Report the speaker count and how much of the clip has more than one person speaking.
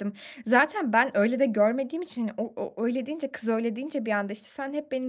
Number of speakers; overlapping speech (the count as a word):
one, no overlap